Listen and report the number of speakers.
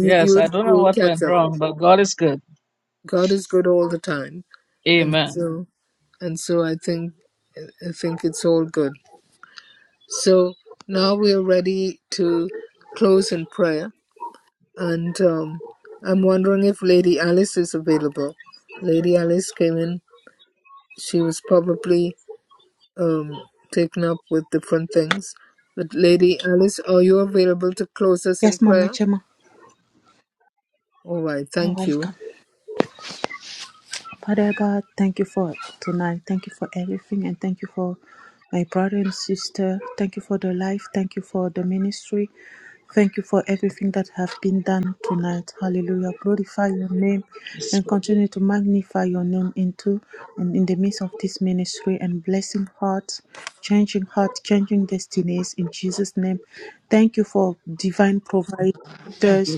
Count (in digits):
3